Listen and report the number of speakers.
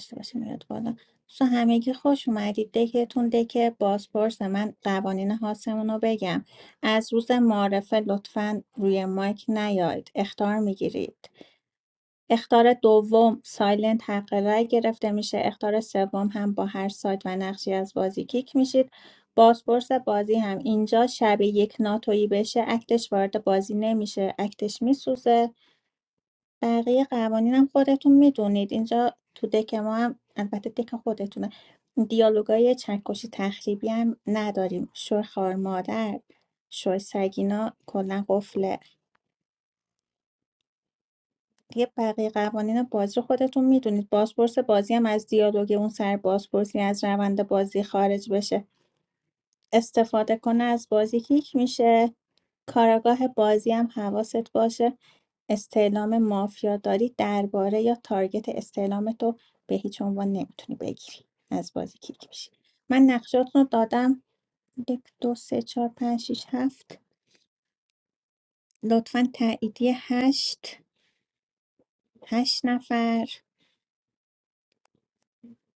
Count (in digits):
1